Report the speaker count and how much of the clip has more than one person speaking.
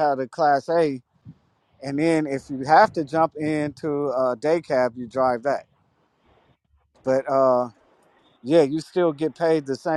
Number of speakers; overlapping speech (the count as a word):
one, no overlap